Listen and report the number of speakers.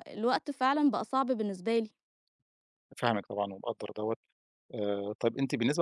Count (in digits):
2